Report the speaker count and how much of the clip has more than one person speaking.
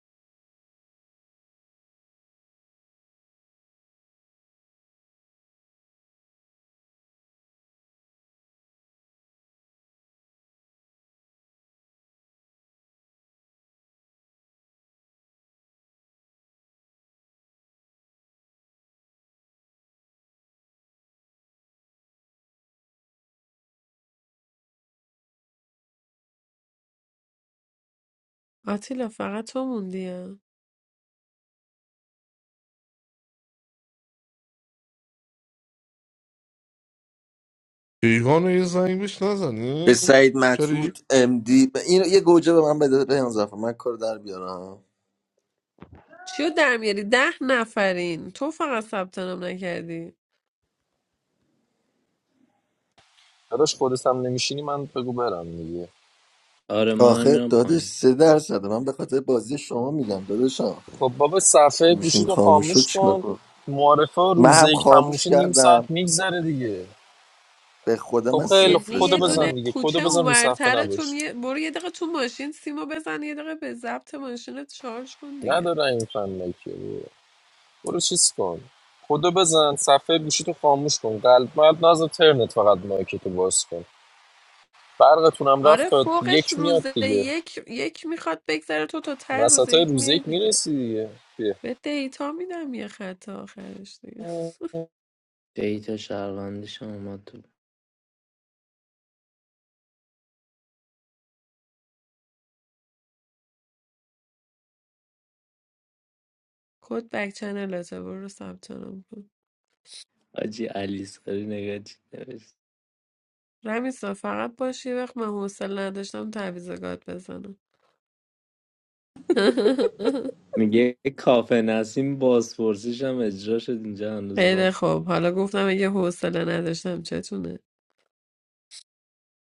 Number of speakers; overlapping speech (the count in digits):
5, about 8%